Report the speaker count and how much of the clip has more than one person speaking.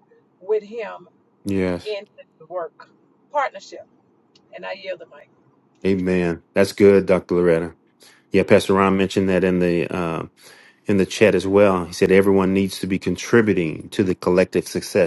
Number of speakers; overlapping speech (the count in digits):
2, no overlap